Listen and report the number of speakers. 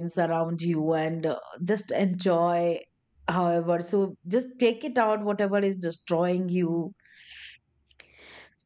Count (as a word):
one